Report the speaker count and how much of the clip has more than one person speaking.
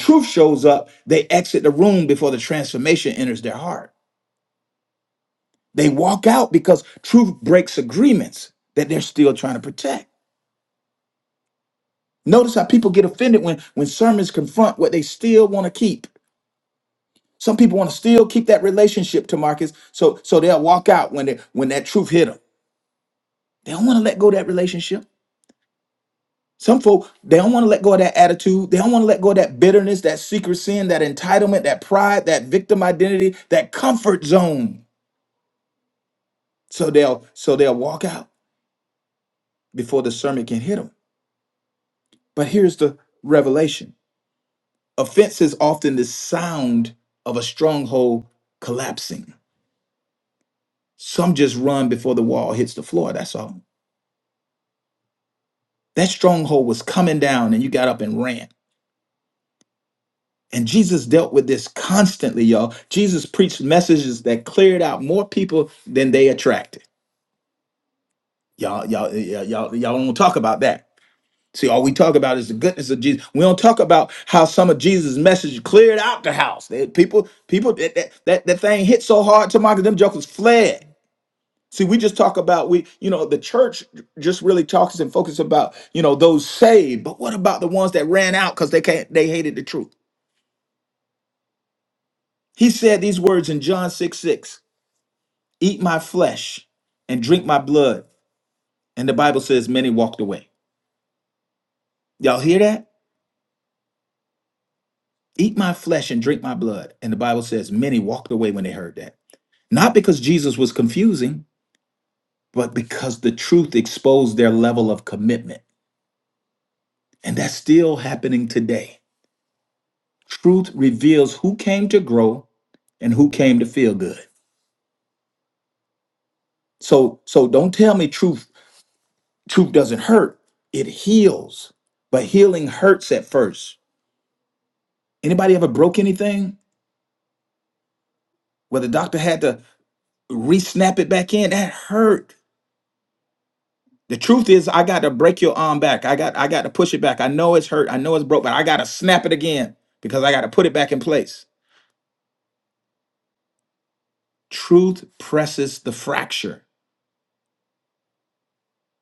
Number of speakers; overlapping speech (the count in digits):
1, no overlap